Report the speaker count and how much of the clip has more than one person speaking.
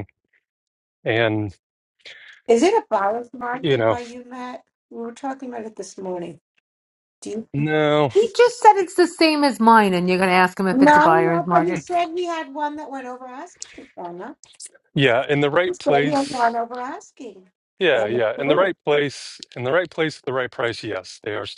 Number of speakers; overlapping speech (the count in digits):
3, about 15%